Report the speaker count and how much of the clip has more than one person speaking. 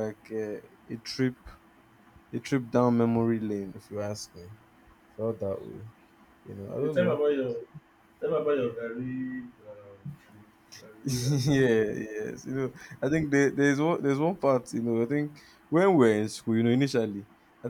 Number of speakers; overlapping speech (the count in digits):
2, about 8%